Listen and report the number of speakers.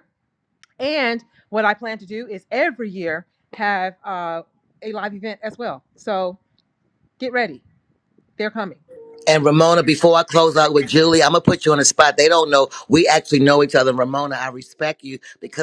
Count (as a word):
two